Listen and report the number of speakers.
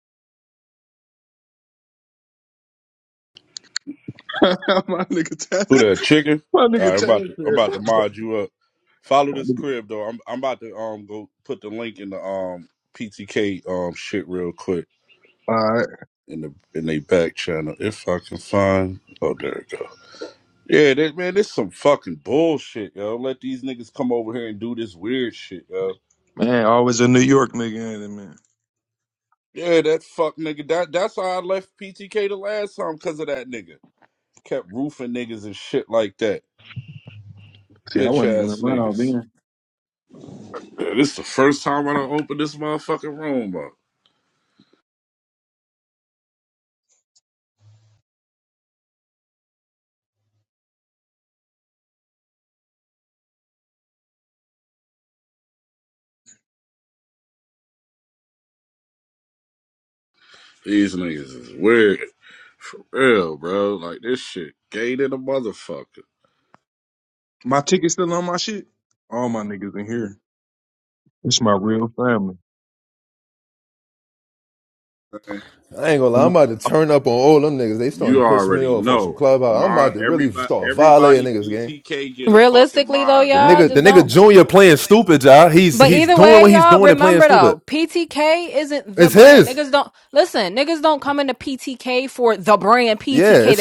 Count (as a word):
four